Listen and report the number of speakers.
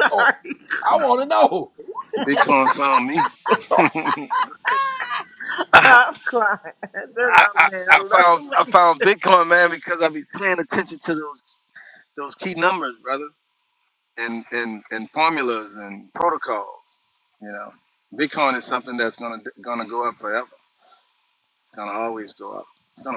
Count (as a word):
three